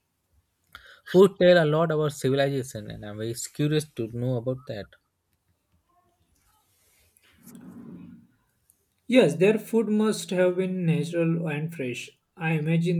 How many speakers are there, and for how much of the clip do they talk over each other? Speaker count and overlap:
2, no overlap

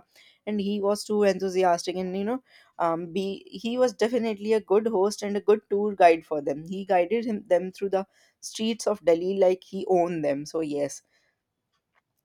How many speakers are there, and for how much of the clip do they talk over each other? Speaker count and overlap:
1, no overlap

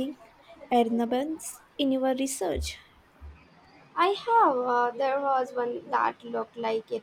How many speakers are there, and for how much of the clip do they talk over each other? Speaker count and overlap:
2, no overlap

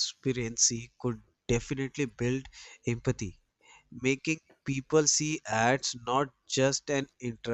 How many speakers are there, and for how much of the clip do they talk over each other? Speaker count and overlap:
1, no overlap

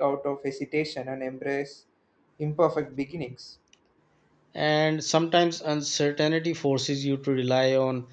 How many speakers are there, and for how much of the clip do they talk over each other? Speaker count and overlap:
2, no overlap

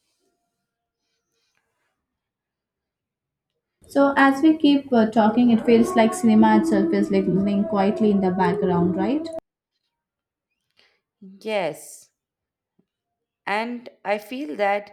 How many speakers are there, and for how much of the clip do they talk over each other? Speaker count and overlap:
2, no overlap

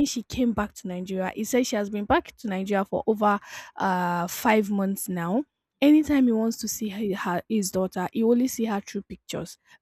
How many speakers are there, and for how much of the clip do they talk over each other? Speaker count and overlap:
1, no overlap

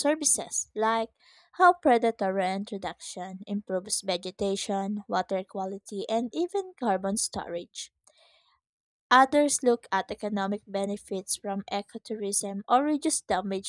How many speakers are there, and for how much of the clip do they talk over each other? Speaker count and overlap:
1, no overlap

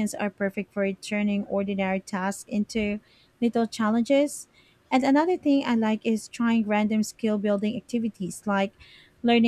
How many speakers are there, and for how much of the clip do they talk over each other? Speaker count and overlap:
1, no overlap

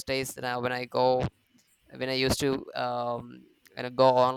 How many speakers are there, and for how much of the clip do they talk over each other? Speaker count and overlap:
1, no overlap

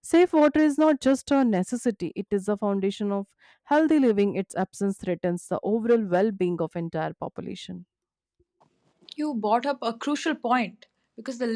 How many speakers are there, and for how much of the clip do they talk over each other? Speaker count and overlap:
2, no overlap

